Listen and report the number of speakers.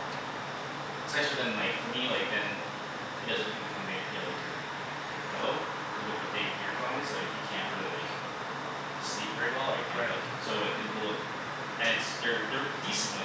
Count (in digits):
1